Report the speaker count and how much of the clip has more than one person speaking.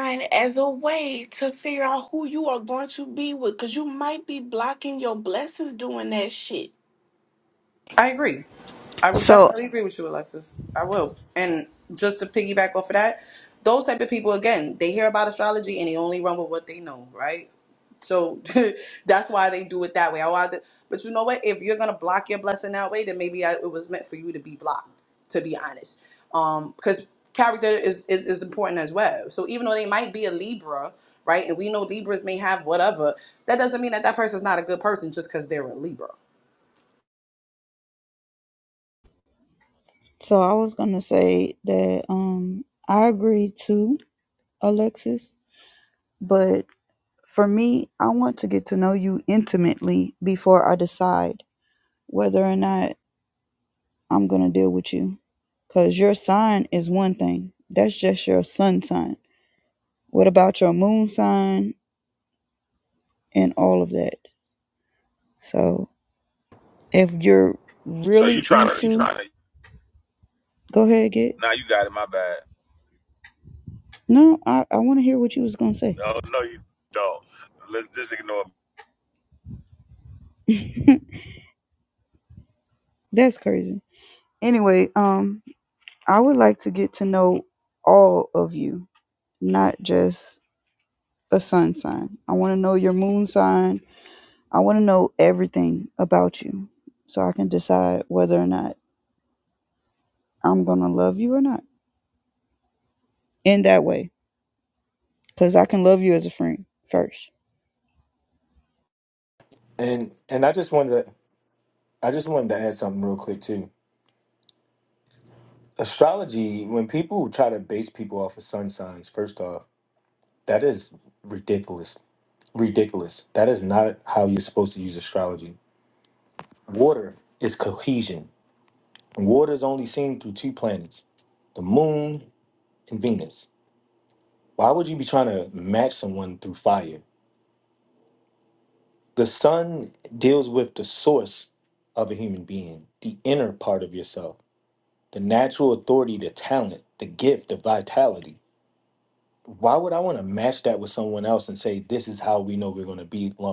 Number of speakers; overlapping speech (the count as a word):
five, about 1%